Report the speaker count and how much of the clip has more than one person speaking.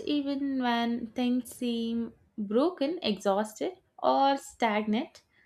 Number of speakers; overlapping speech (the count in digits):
1, no overlap